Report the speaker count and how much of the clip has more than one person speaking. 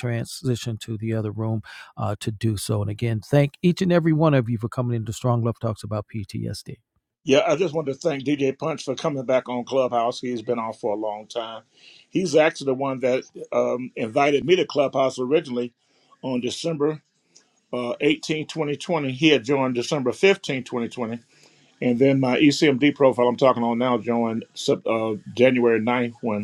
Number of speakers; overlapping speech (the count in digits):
2, no overlap